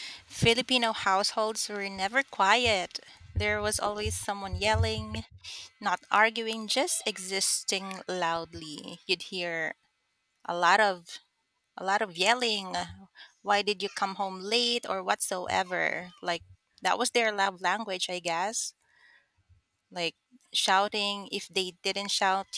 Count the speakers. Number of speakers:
one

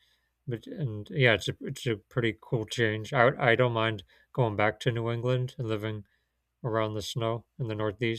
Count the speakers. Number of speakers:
one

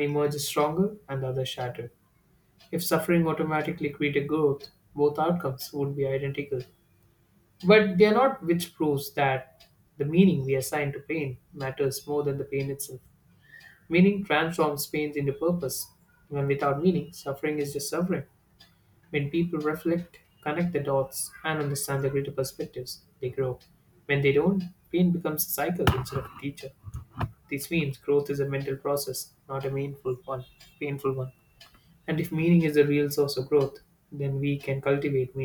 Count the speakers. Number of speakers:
one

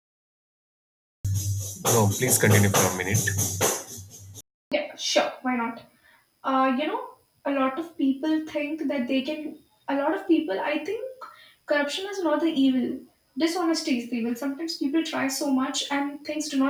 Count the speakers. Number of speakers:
two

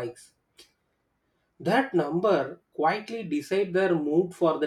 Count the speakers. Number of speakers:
one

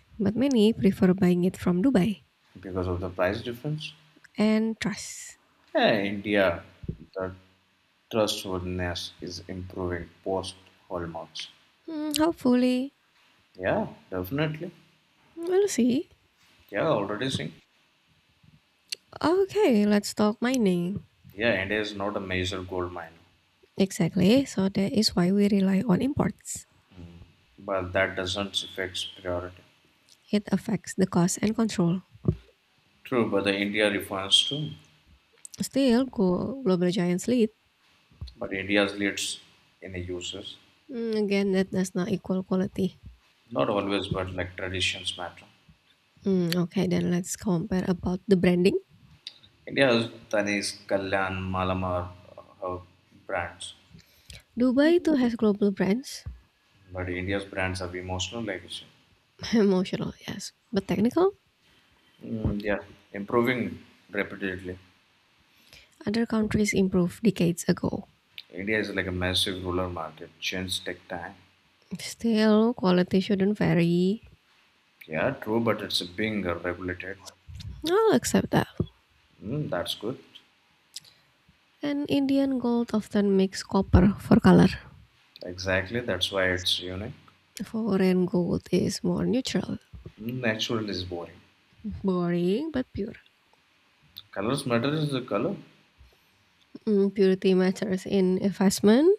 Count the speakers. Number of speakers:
two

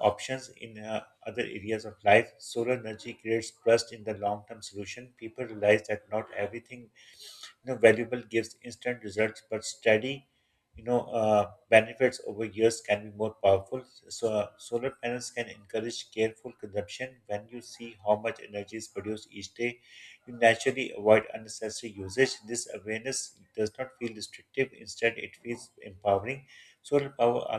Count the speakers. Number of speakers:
one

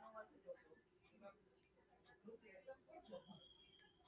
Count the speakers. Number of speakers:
zero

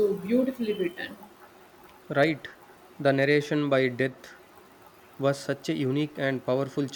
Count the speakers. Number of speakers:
two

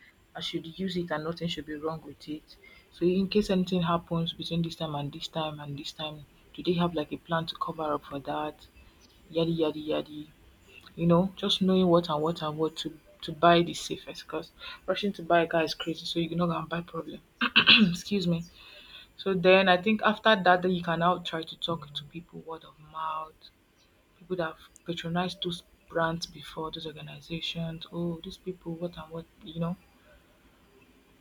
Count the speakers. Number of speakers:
one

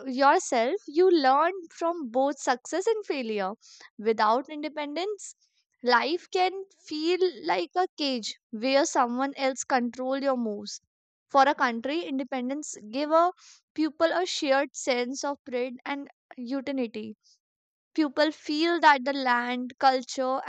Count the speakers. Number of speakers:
one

